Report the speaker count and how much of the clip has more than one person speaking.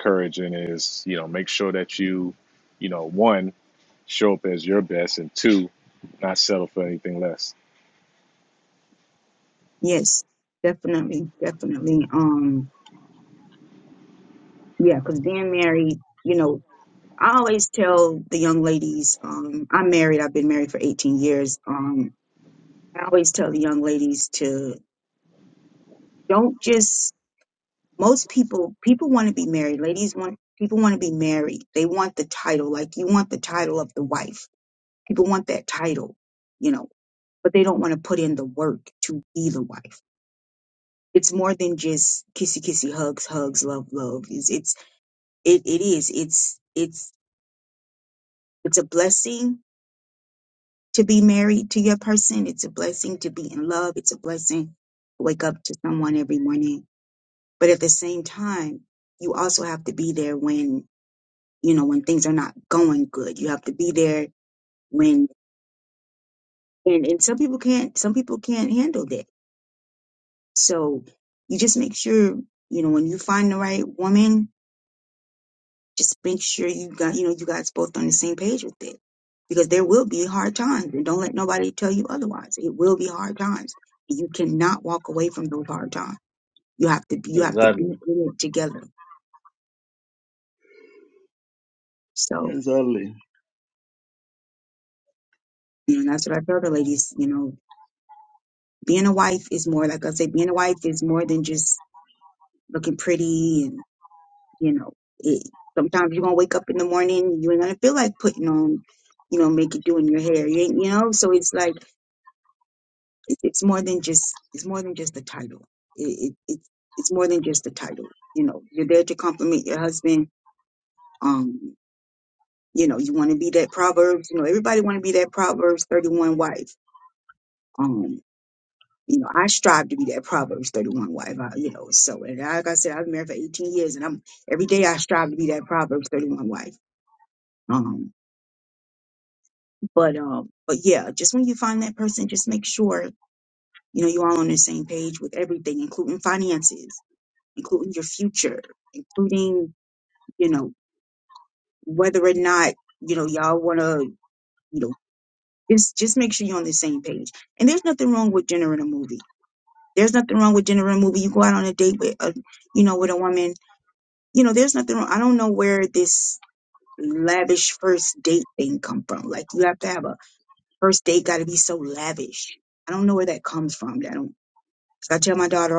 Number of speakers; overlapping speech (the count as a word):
three, under 1%